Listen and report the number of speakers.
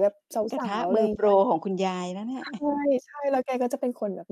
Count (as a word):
two